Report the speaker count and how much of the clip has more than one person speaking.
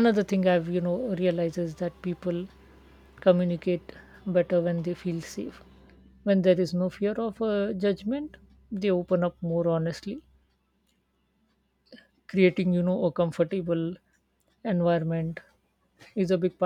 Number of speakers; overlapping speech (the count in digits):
1, no overlap